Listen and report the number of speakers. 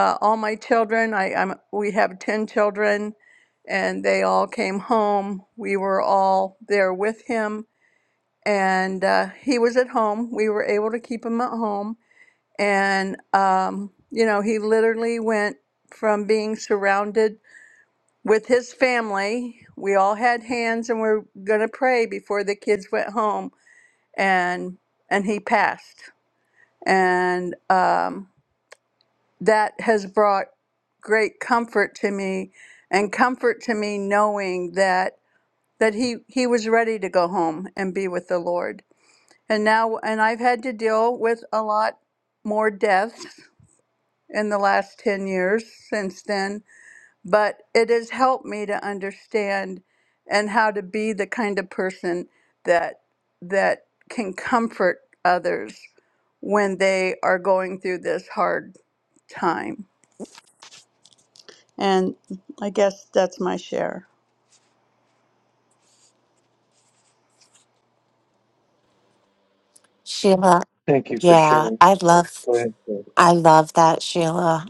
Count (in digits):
3